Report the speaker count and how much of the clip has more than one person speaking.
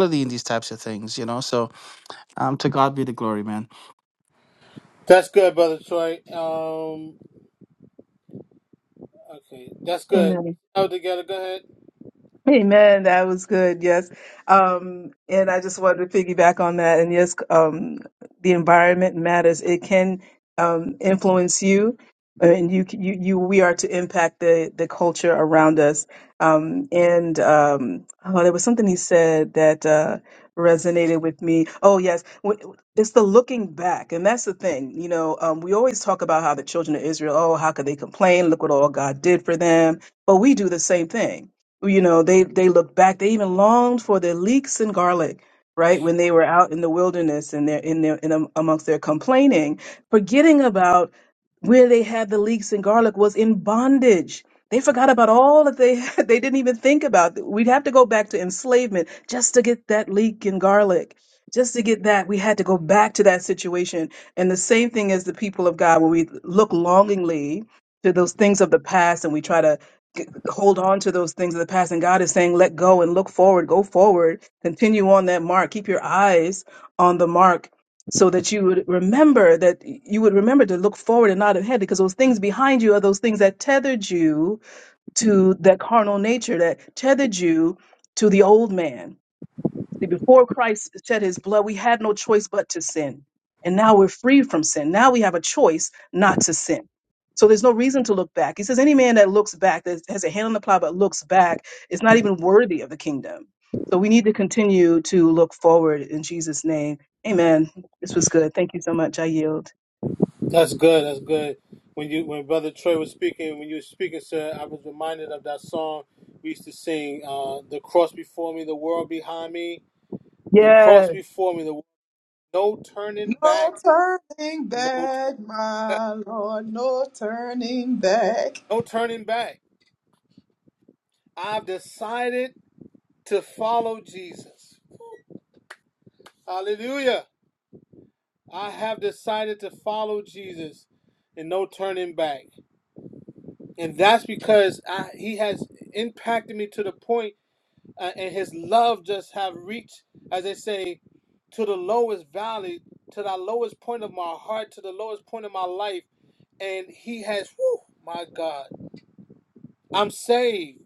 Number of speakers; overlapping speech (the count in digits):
4, about 1%